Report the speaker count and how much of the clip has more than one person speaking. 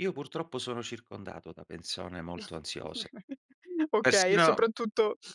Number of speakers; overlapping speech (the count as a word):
two, about 10%